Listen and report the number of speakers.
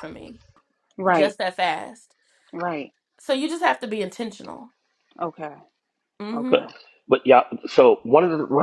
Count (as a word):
three